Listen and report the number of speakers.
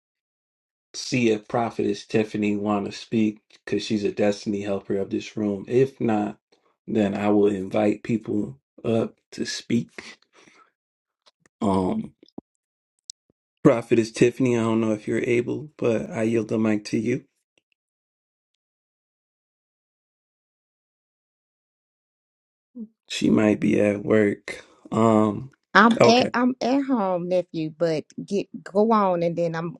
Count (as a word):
two